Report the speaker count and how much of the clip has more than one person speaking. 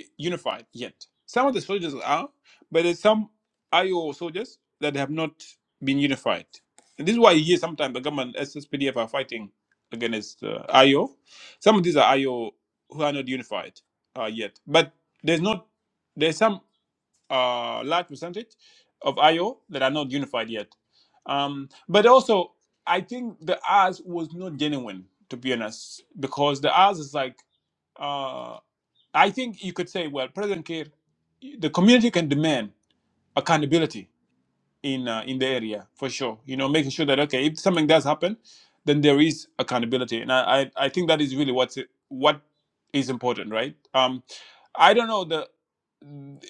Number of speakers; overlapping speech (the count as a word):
one, no overlap